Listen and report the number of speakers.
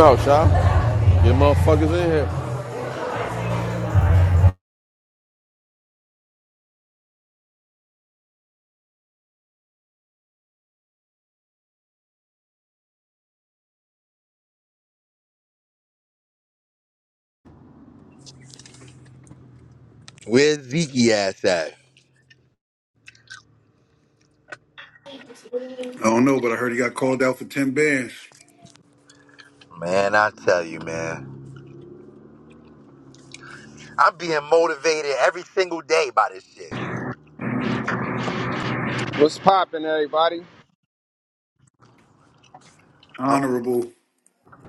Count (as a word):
four